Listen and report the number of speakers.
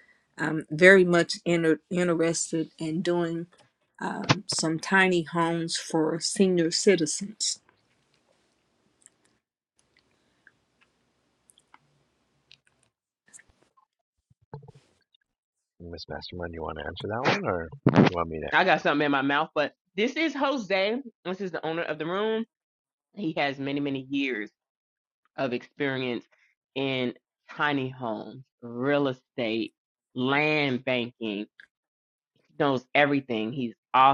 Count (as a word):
three